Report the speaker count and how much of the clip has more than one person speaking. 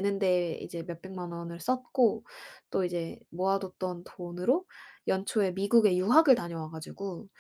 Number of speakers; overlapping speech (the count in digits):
1, no overlap